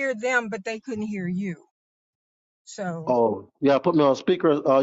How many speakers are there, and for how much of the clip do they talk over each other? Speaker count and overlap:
two, about 1%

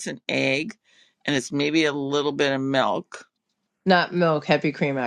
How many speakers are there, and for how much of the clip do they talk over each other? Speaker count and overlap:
two, no overlap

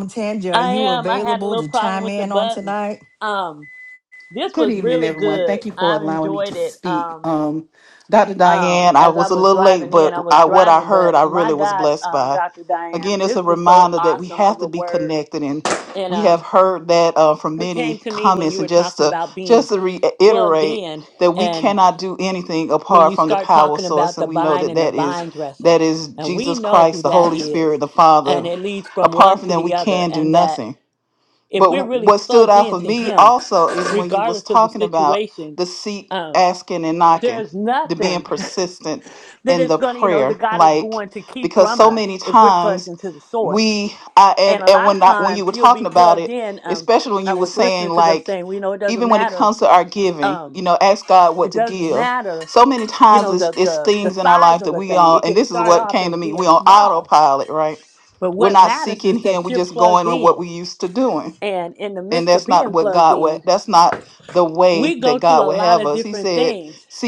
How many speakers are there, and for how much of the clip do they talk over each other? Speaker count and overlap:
three, about 60%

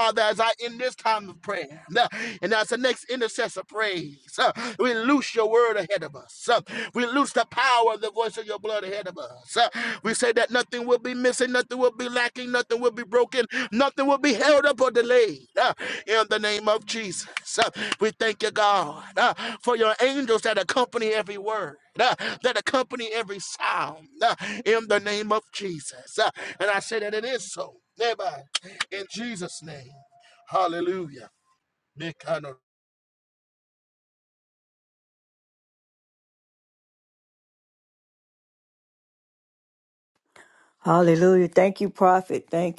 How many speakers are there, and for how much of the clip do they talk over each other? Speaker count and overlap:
two, no overlap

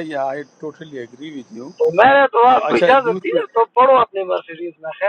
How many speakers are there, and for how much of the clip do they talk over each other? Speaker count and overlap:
two, about 15%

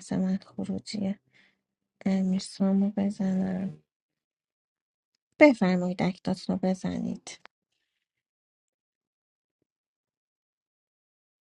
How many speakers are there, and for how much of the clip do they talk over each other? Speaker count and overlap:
one, no overlap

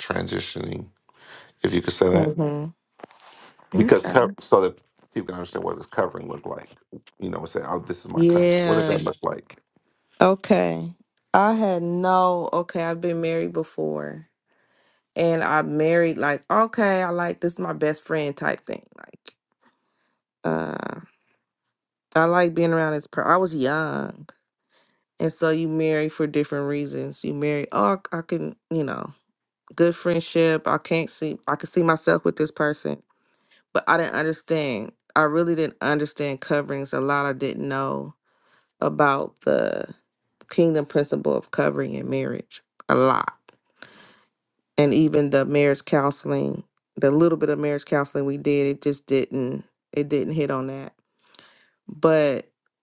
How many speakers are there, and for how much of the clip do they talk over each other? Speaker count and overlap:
two, about 3%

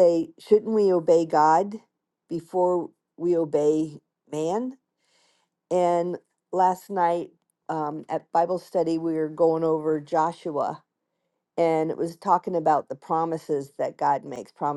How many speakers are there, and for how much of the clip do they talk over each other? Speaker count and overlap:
one, no overlap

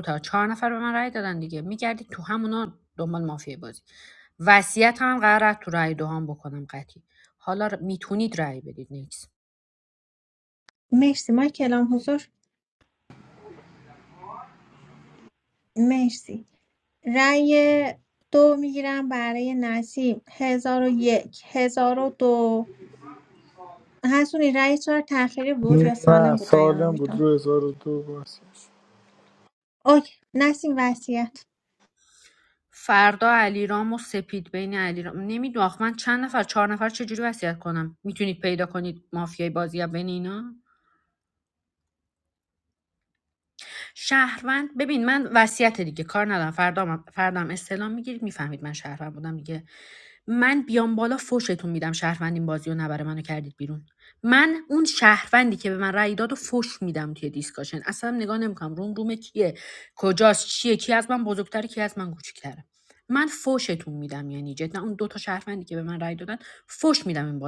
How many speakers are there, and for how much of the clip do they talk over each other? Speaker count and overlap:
three, about 2%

